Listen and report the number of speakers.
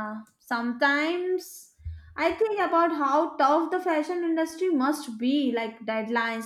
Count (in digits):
1